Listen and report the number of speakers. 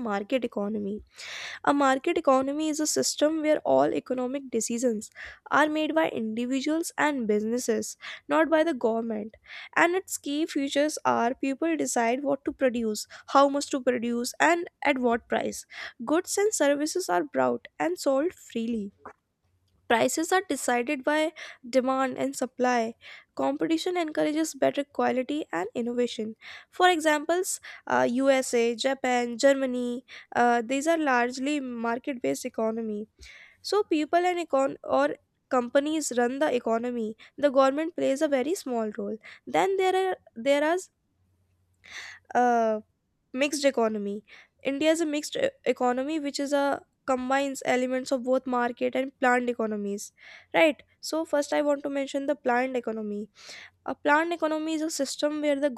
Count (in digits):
1